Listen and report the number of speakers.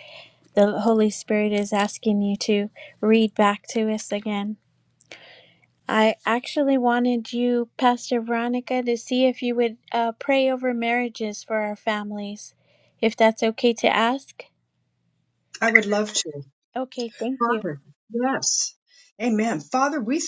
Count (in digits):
2